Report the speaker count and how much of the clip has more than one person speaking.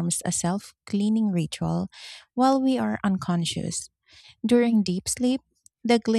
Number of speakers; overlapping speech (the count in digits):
1, no overlap